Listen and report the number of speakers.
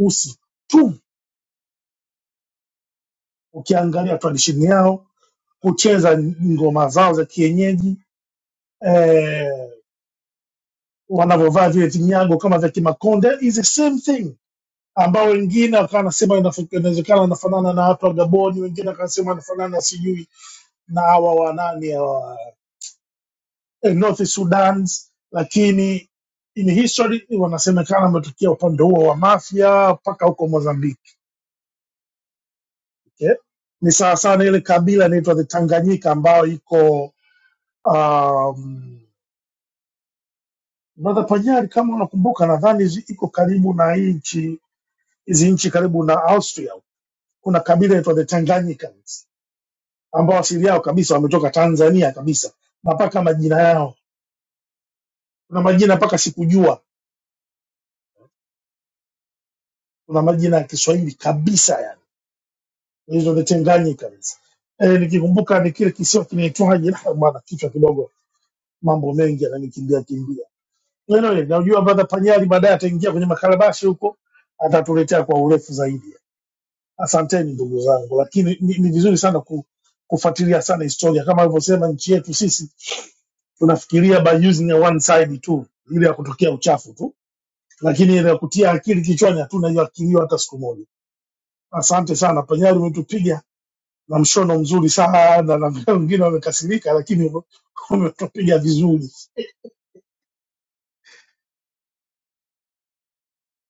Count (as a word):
one